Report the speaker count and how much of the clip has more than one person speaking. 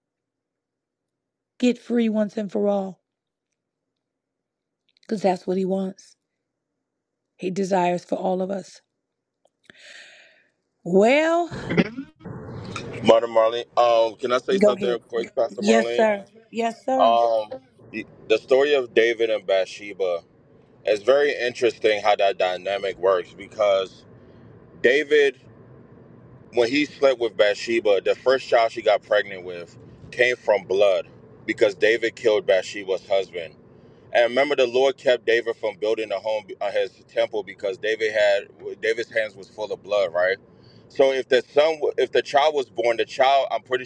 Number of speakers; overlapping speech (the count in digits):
2, about 3%